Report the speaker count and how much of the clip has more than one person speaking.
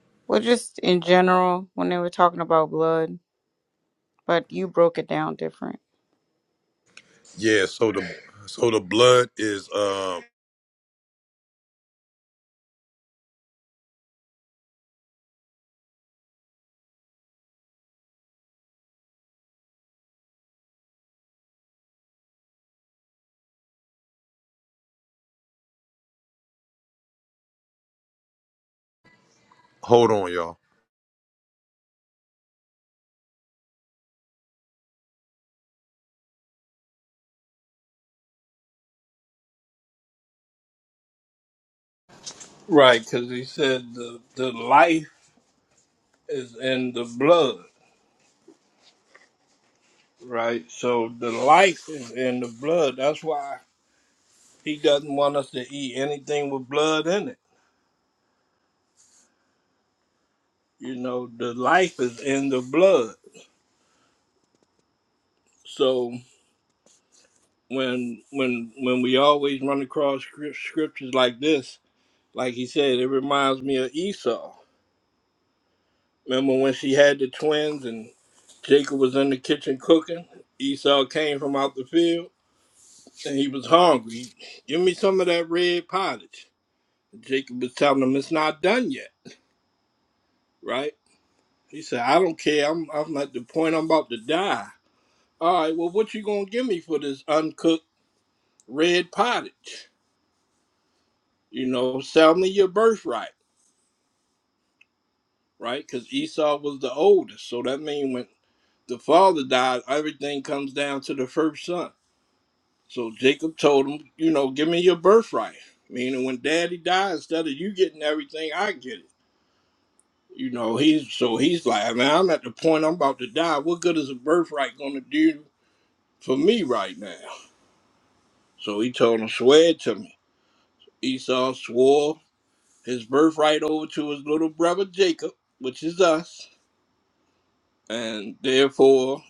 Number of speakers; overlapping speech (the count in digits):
3, no overlap